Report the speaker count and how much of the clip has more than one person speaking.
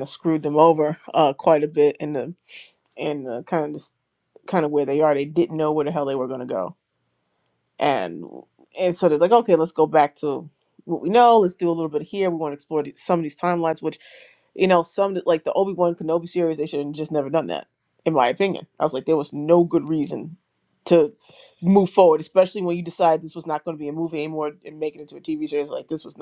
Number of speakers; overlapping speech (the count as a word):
one, no overlap